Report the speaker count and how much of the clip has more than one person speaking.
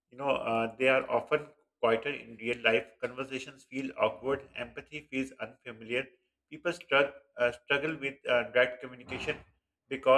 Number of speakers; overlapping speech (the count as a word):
one, no overlap